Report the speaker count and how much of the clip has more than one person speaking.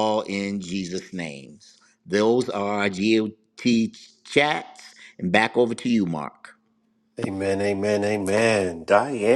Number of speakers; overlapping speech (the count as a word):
two, no overlap